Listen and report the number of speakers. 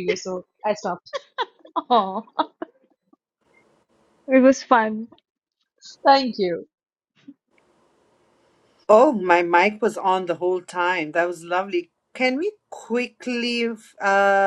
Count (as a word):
three